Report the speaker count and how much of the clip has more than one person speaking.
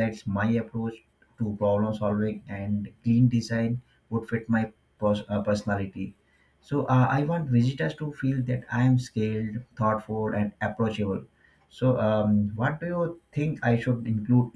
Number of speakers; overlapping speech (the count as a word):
one, no overlap